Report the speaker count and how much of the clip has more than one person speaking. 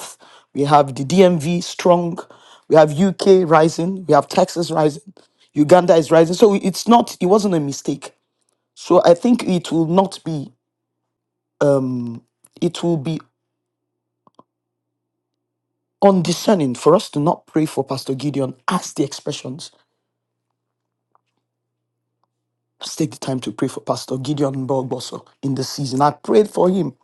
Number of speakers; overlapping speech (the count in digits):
1, no overlap